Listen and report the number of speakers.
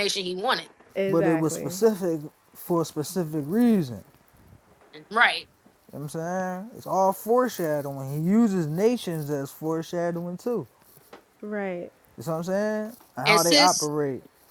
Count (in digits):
3